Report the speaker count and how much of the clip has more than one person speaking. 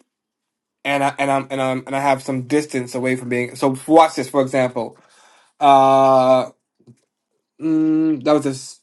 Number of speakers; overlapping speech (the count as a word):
one, no overlap